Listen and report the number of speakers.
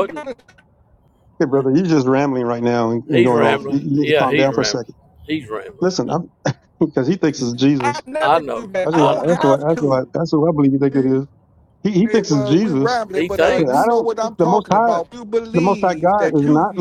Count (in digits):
3